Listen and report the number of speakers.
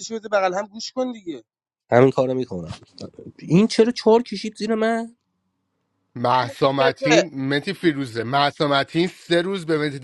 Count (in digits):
3